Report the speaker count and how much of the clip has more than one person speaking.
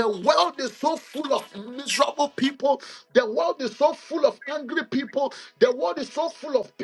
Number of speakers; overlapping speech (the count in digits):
1, no overlap